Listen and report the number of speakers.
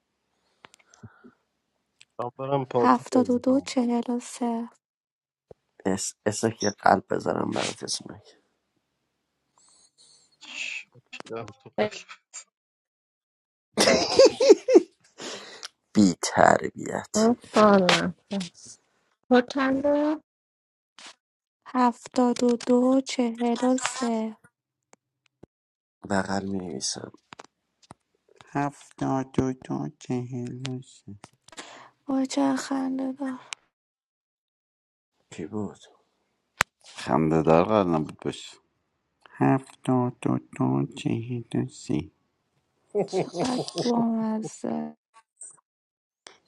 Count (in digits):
5